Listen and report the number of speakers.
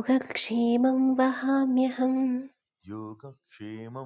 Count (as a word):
two